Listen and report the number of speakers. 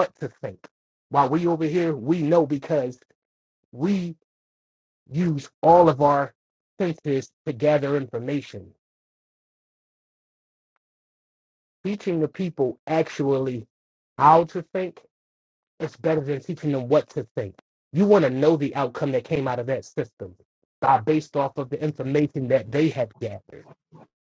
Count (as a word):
one